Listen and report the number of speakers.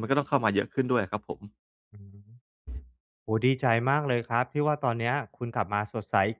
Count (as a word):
two